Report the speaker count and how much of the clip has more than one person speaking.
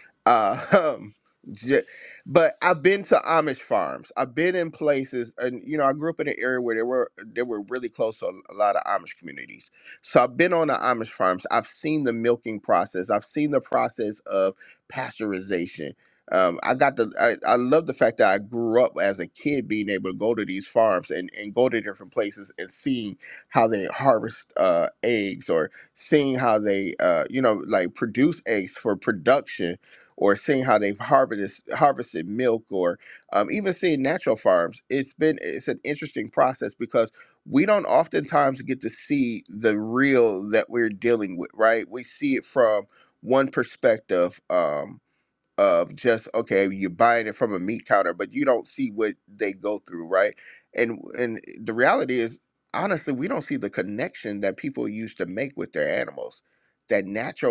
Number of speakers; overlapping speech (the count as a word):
one, no overlap